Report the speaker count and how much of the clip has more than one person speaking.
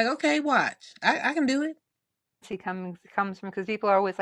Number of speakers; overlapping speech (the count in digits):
2, no overlap